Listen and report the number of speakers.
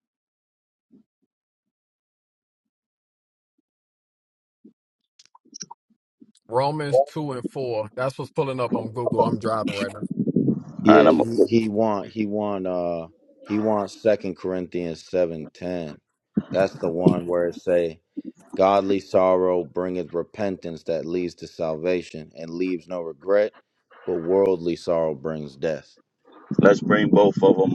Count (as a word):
three